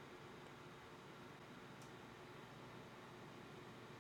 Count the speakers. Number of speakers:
0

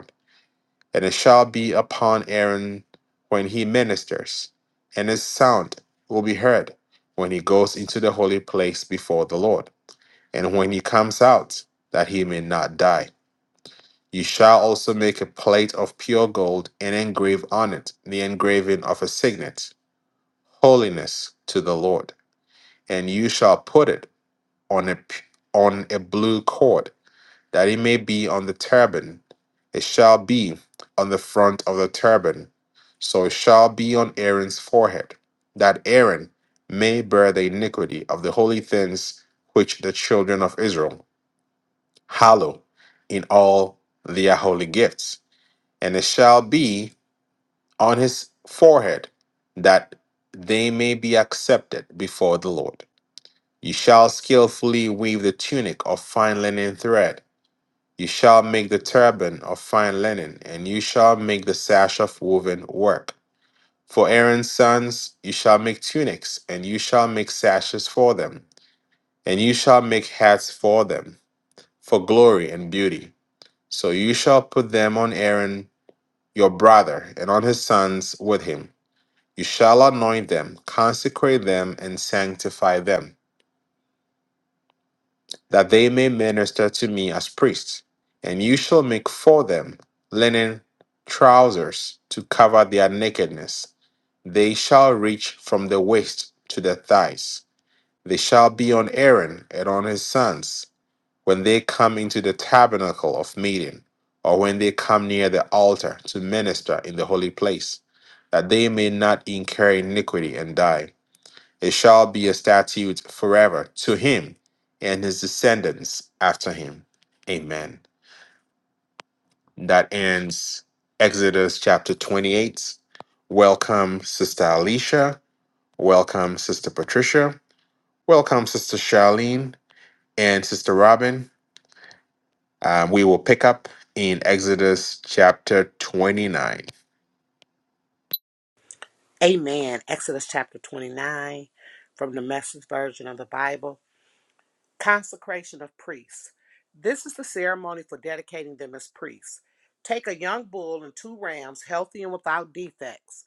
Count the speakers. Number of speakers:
2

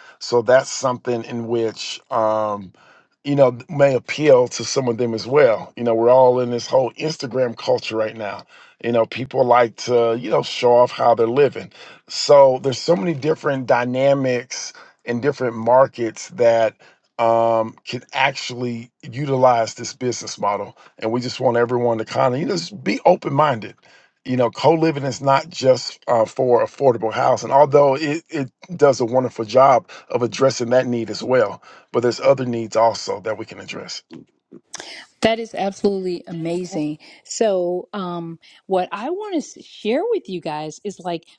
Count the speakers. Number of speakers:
2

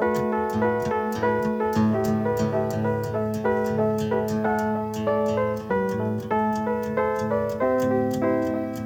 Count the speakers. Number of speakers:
0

